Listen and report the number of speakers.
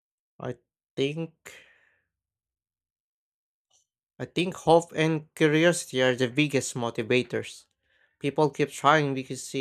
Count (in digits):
1